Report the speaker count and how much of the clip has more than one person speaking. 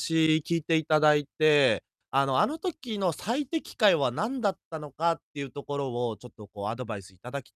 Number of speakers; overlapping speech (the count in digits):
1, no overlap